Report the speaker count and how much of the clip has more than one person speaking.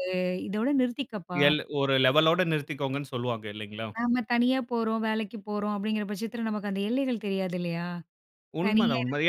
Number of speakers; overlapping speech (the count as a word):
two, about 6%